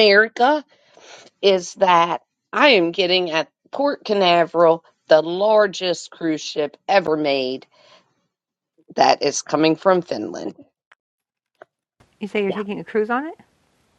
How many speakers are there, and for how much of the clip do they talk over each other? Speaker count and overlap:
2, about 1%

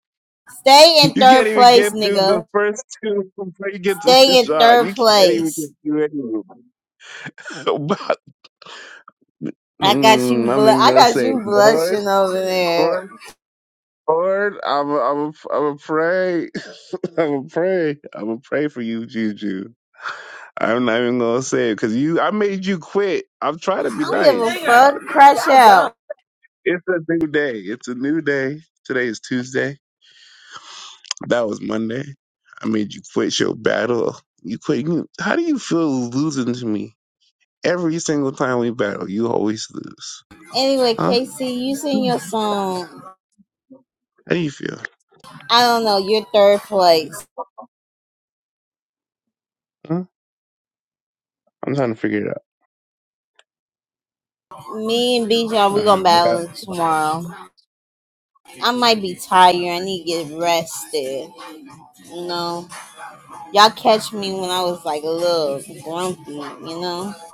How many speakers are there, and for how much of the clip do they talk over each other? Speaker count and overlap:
2, about 12%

